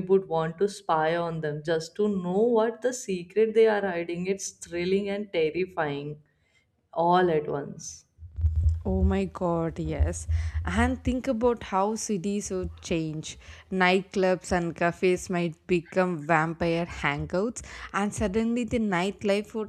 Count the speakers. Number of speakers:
2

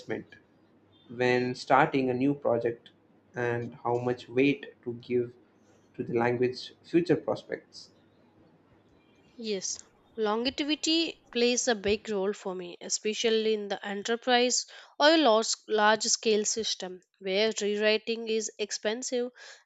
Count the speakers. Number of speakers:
2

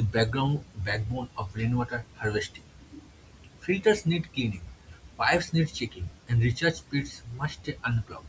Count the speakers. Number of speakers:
1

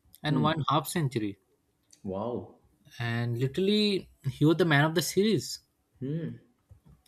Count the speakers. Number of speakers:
2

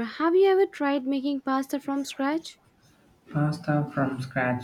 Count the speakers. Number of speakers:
2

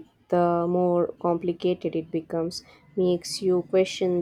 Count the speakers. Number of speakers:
1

